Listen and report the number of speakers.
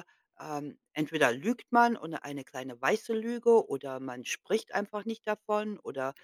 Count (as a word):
one